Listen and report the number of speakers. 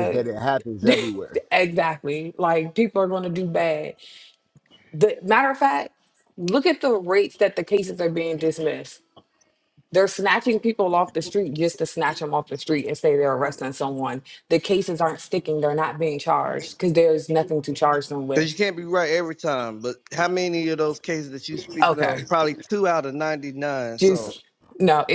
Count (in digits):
3